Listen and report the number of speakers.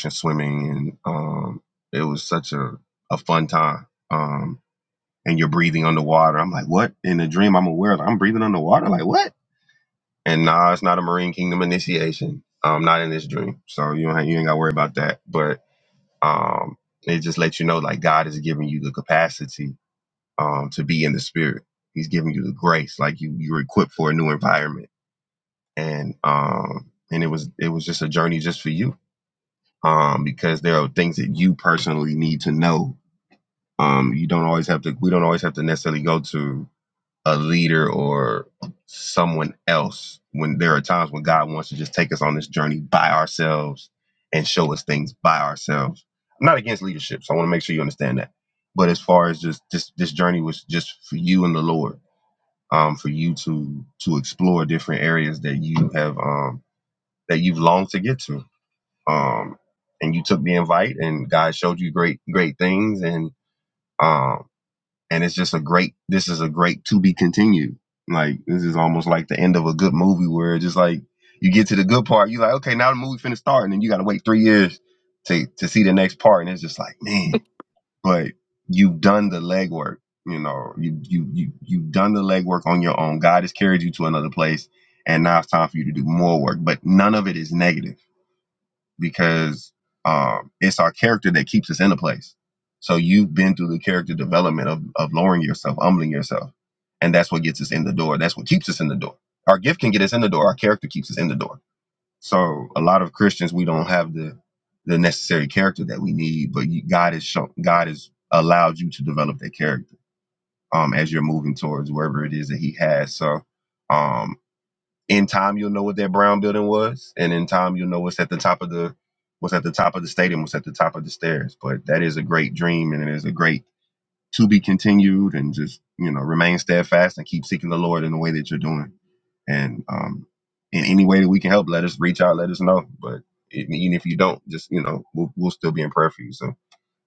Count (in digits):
1